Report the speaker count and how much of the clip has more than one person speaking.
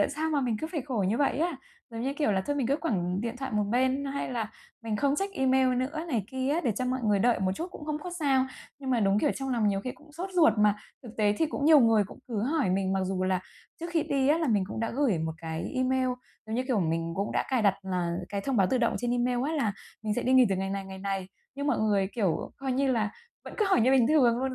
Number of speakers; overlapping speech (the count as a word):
one, no overlap